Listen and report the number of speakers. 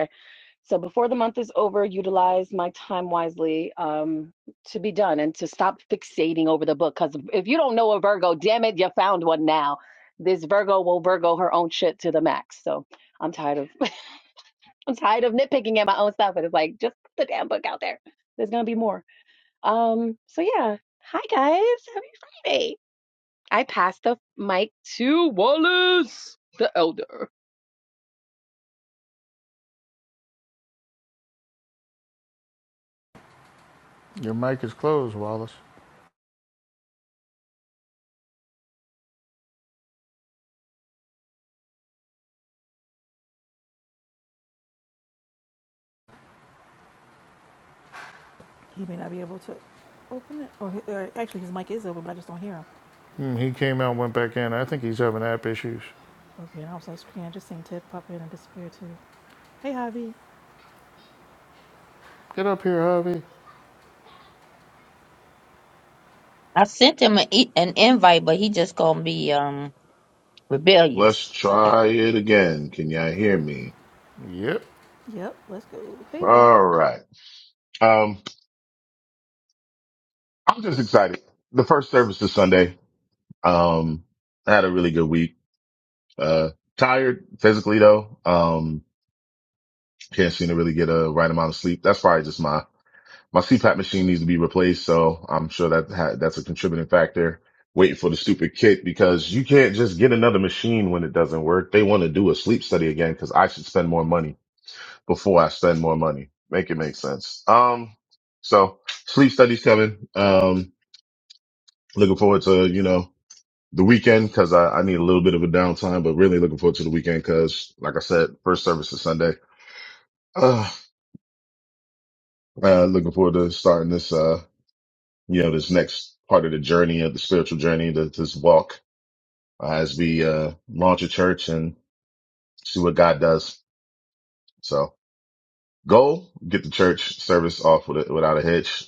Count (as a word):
five